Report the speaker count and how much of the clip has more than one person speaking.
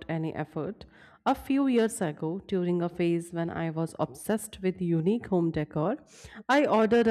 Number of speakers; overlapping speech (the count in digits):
1, no overlap